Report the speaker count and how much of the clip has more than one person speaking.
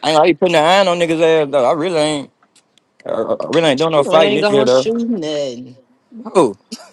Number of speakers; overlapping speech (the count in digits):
2, about 14%